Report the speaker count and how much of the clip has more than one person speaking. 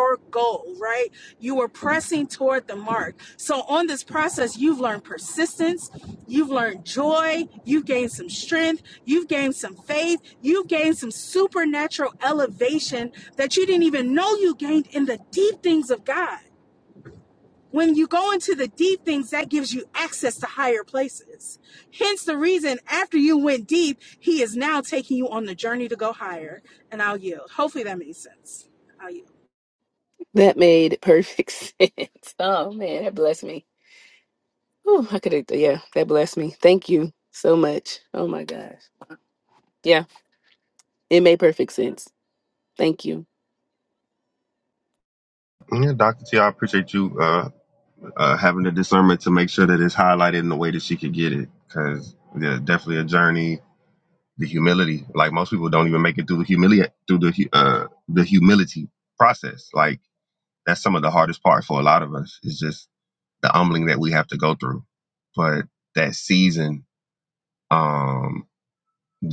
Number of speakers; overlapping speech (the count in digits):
3, no overlap